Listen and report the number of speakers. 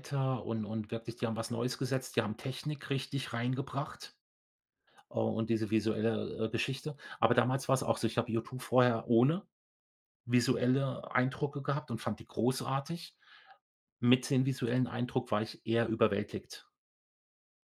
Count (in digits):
1